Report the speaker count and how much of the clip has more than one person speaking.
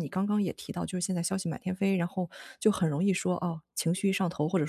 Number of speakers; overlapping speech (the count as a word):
one, no overlap